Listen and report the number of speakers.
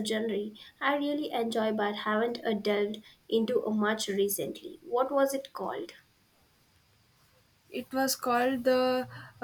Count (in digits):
2